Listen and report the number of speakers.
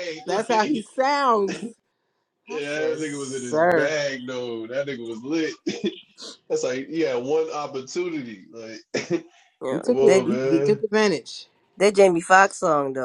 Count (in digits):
3